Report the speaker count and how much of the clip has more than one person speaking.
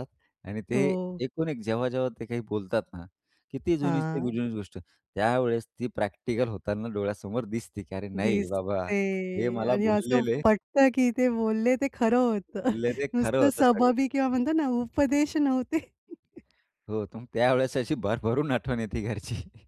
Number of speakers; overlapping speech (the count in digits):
2, about 13%